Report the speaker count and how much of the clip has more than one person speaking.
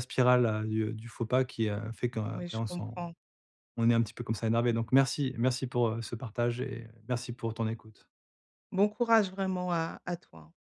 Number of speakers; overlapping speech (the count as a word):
two, about 6%